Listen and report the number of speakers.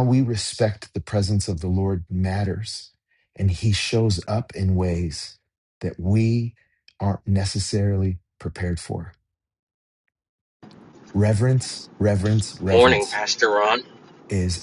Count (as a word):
two